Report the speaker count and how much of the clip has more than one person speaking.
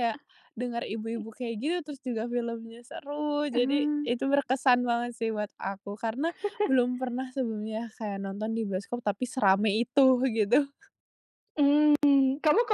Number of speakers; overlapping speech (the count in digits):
2, about 4%